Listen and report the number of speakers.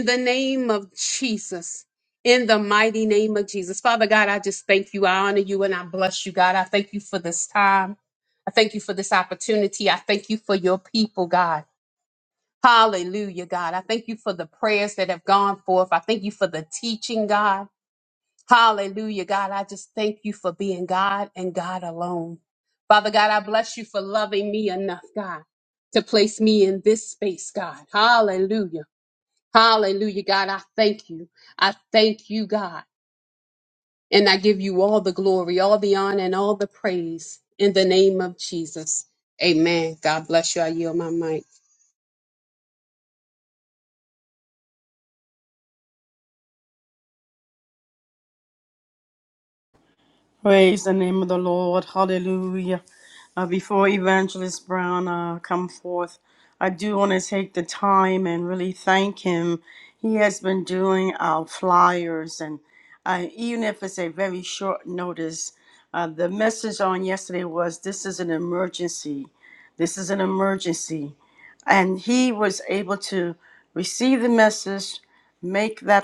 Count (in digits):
2